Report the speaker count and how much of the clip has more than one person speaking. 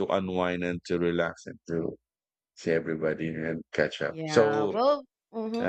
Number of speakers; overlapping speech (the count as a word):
two, about 14%